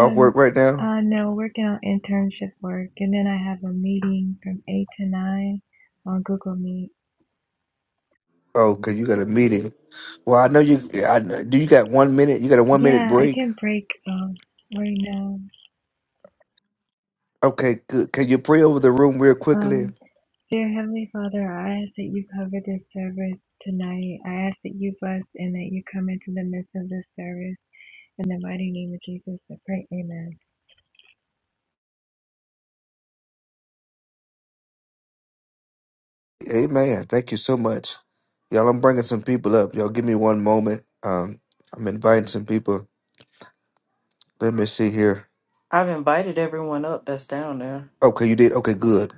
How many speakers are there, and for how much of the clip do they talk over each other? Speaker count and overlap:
3, about 3%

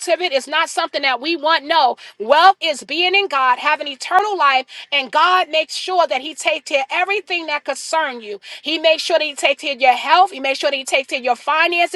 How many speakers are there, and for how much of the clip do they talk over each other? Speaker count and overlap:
1, no overlap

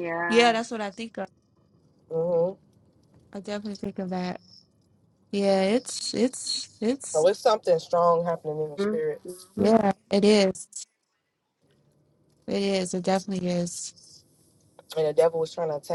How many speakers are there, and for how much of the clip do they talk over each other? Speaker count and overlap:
3, about 6%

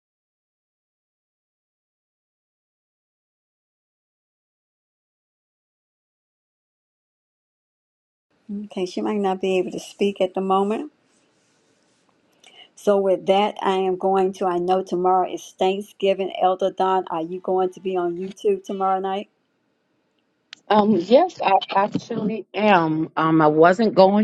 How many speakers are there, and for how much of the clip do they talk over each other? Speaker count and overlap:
2, no overlap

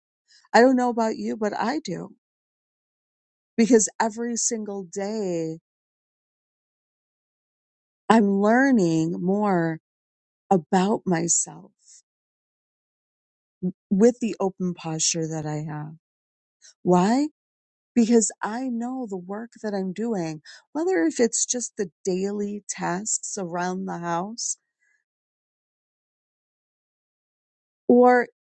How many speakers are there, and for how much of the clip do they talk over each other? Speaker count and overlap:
1, no overlap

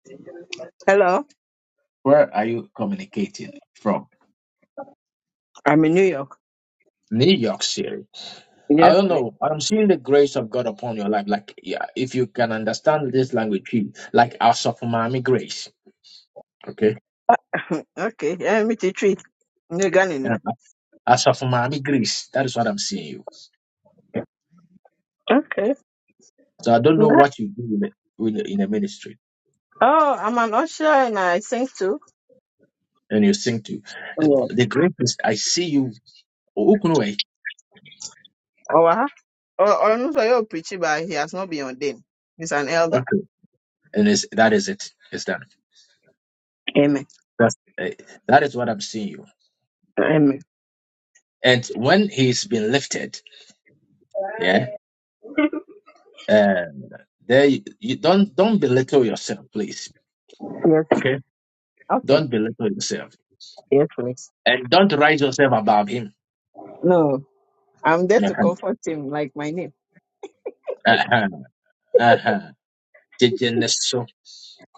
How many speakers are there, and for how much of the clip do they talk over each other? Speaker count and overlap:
2, about 2%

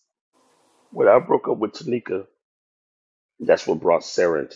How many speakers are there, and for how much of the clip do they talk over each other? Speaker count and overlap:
1, no overlap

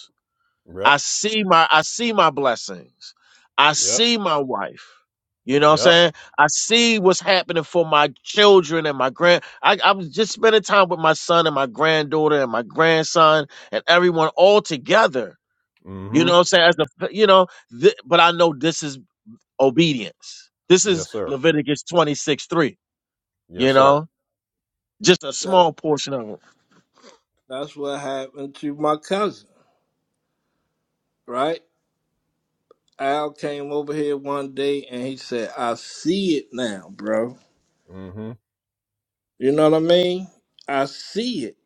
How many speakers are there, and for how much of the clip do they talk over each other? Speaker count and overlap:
3, about 4%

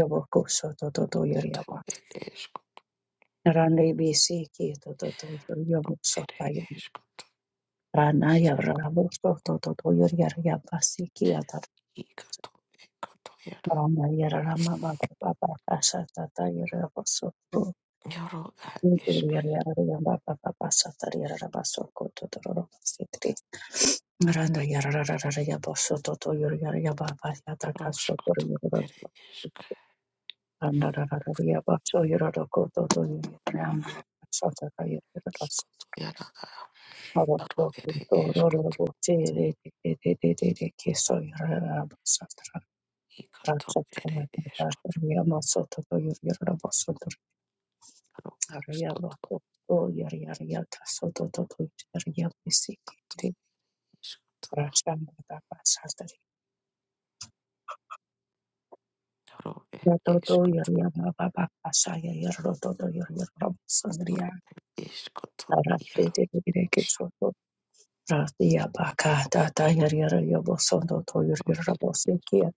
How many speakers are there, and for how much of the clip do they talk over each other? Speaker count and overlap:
2, about 12%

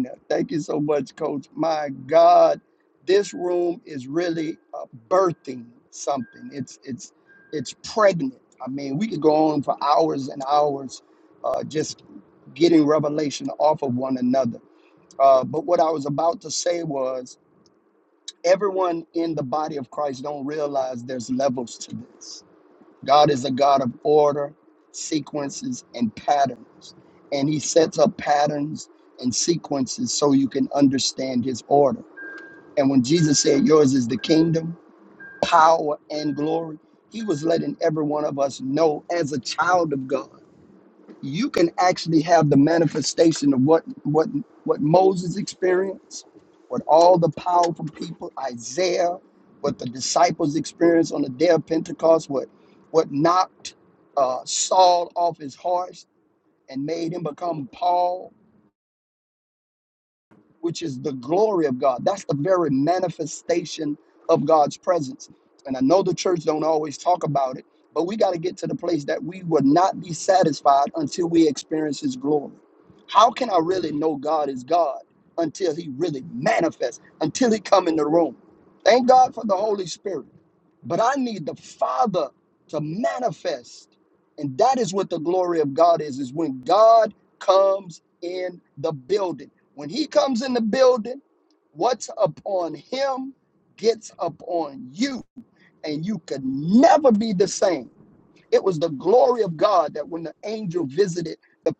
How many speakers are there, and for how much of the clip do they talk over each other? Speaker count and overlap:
1, no overlap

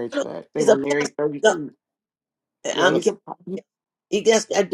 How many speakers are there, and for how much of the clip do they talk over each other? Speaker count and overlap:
2, about 25%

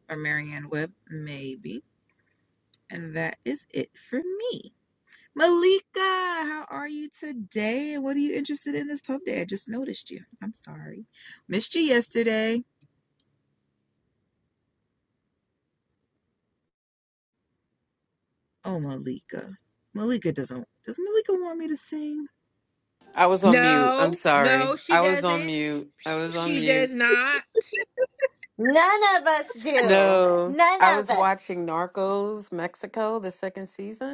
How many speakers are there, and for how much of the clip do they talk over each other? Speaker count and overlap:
4, about 12%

